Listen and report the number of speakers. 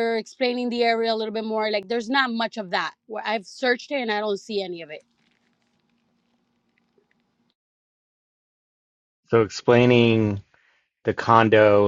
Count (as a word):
two